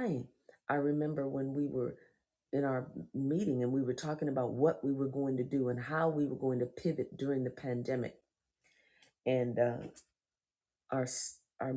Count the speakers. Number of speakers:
1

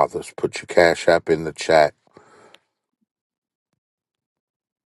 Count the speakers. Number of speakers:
1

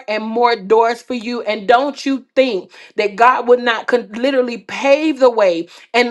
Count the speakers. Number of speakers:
1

